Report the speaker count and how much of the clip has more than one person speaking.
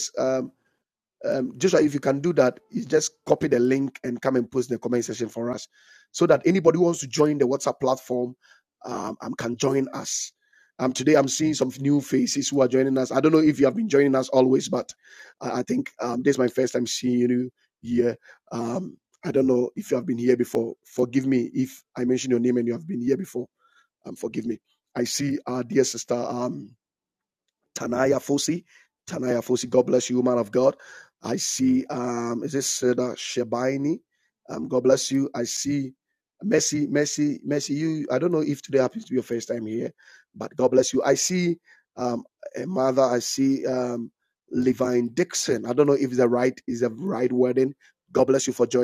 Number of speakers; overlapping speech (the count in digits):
1, no overlap